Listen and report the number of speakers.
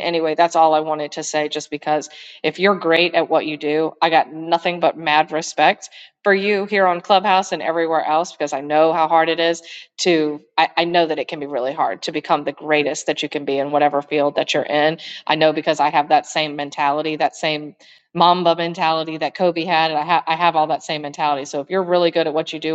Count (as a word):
one